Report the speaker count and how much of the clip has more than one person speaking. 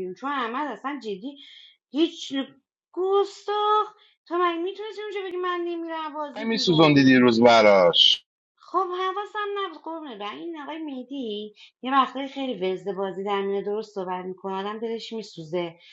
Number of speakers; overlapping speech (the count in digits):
2, about 4%